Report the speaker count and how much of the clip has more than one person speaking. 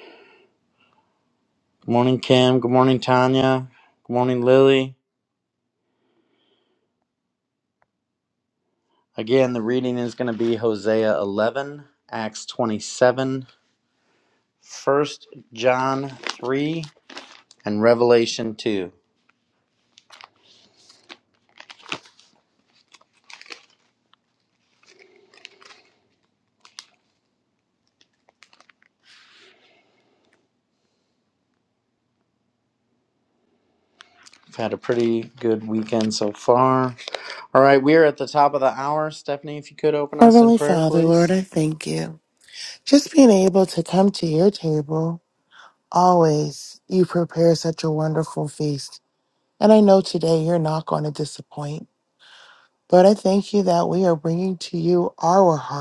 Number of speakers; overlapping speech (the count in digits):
2, about 2%